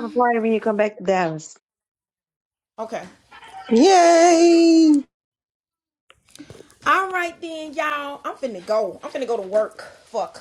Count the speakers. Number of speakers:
3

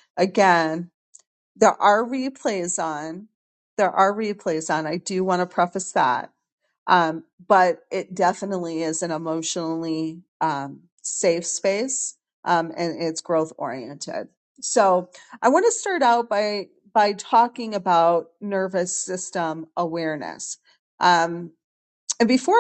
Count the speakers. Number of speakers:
1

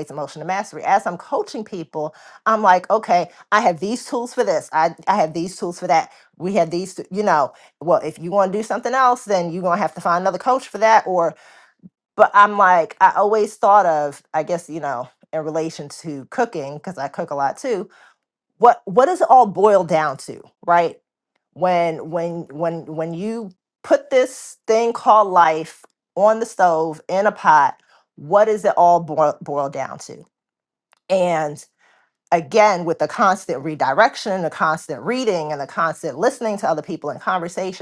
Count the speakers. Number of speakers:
1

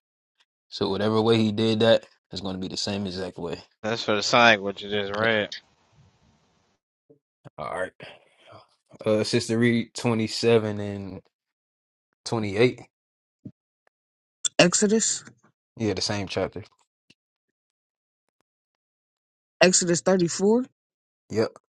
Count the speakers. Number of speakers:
3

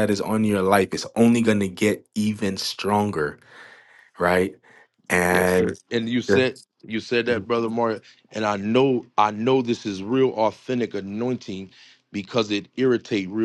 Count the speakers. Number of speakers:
2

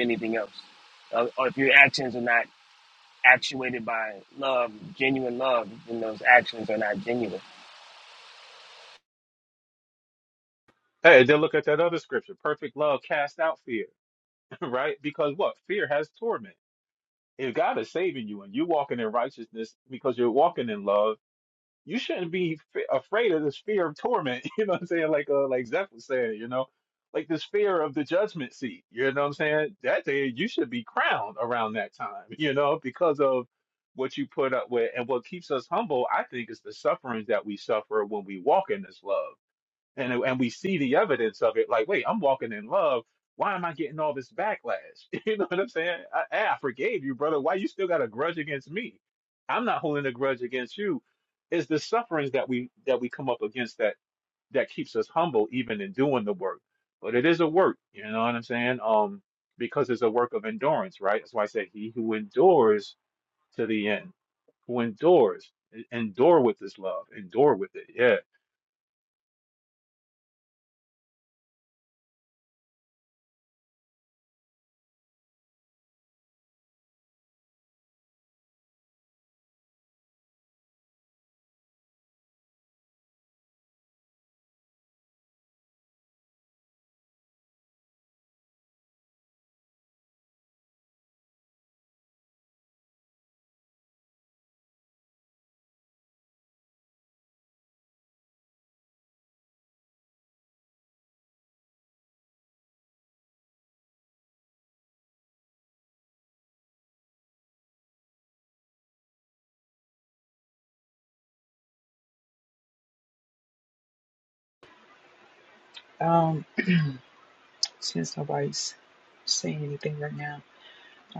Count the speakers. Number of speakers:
3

